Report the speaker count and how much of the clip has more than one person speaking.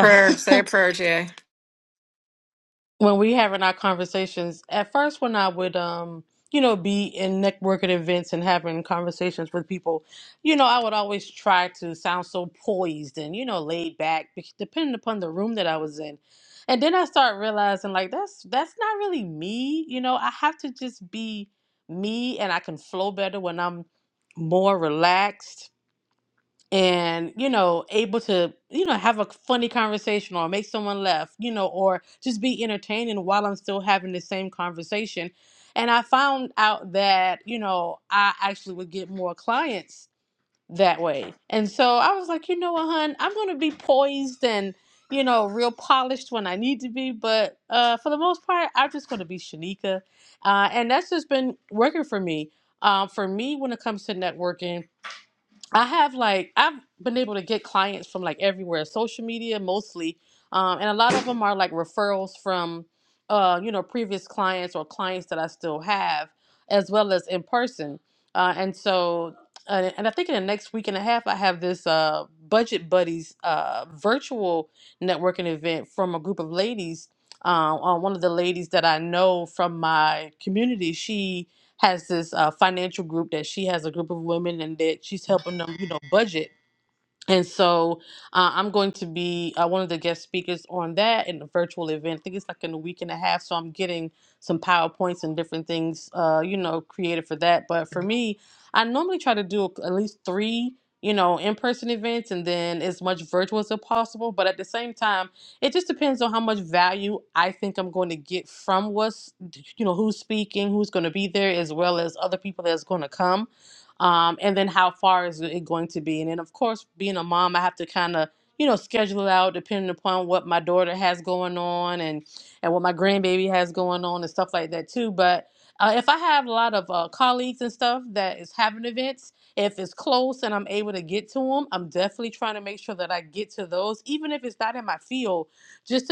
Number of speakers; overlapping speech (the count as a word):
two, no overlap